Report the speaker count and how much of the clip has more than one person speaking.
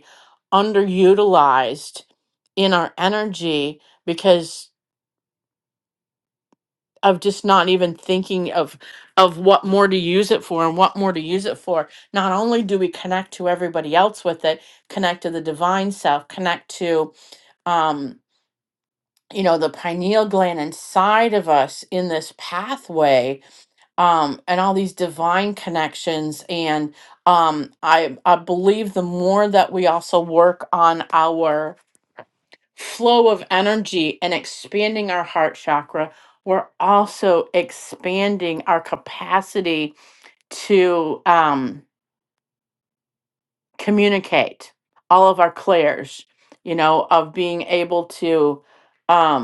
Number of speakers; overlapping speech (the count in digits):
1, no overlap